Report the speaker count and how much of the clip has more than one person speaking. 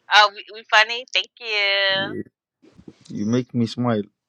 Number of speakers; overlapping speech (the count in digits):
2, about 4%